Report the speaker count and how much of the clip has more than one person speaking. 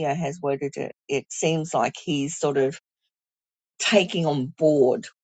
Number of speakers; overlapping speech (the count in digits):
1, no overlap